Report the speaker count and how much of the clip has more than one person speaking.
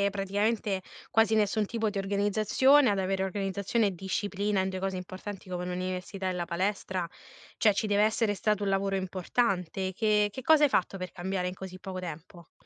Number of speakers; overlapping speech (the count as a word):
one, no overlap